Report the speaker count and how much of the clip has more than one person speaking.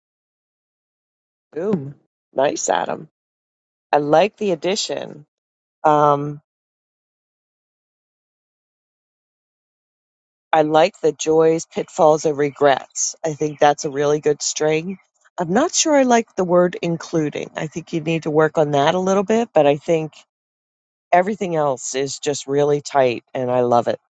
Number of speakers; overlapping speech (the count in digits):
1, no overlap